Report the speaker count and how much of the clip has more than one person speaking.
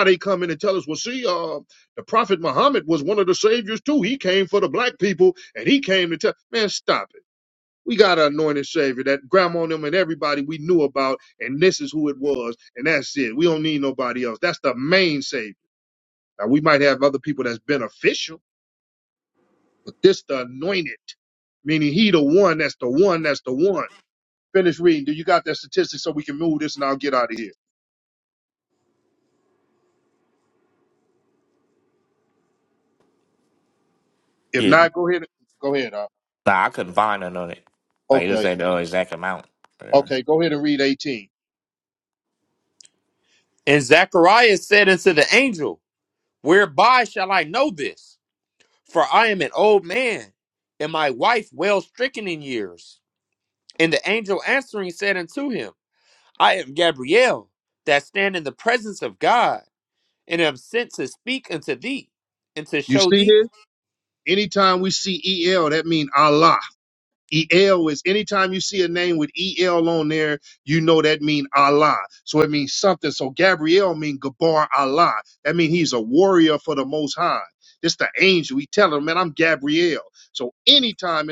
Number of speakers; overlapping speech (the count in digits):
3, about 1%